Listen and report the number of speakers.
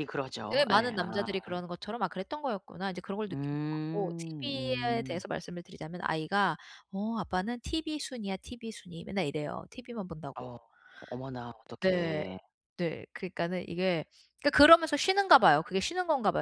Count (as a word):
two